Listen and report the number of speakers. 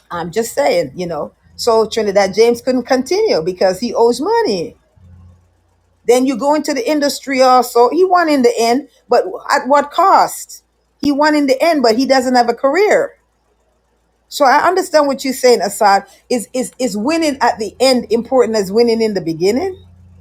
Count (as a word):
one